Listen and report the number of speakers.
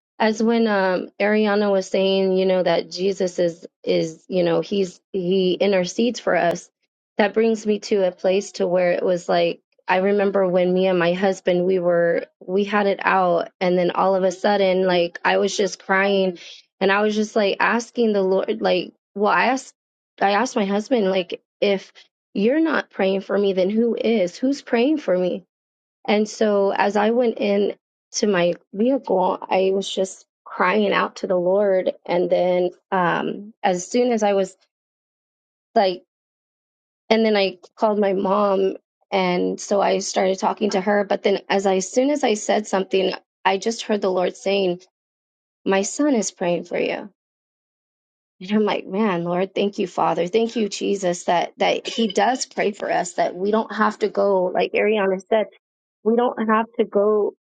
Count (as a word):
one